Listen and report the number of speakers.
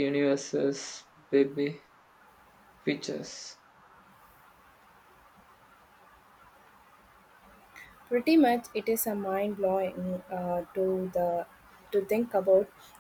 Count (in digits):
2